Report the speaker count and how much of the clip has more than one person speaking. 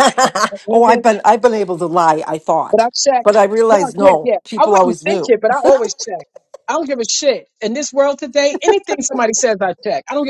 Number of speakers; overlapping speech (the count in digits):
2, about 20%